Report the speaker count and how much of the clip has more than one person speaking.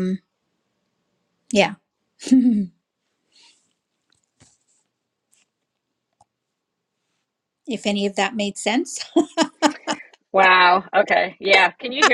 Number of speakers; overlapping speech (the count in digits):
2, no overlap